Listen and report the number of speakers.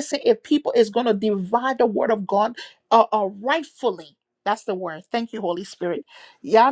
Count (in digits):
1